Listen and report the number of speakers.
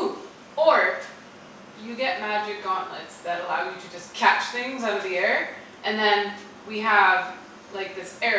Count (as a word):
one